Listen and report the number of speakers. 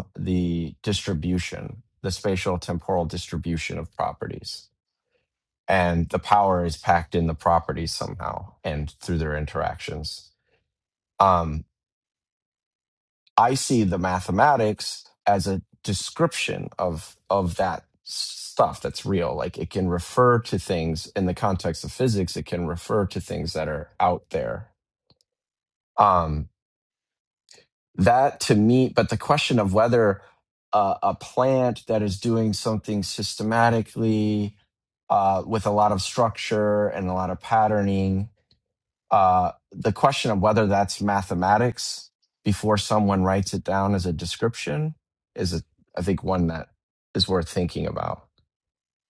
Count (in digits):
1